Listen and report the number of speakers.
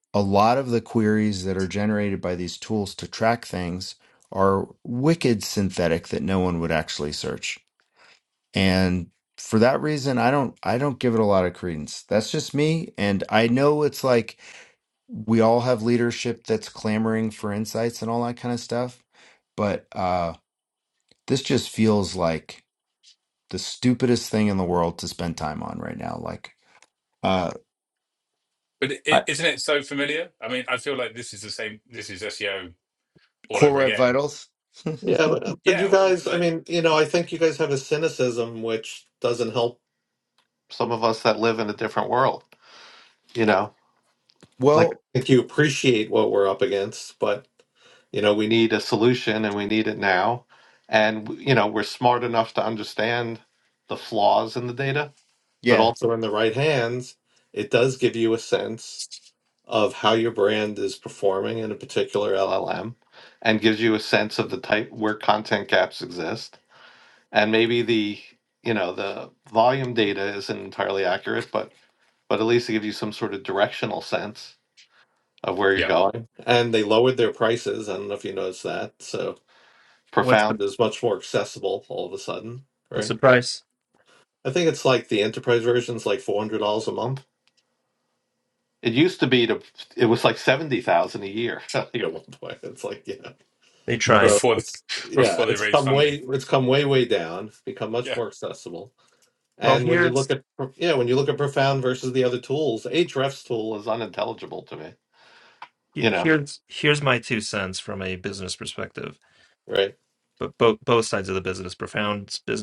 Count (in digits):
4